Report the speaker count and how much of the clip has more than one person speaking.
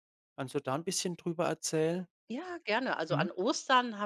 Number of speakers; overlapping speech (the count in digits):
2, about 4%